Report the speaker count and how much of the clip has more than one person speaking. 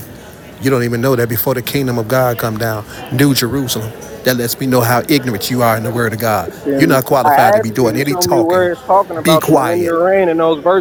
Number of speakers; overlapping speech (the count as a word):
two, about 28%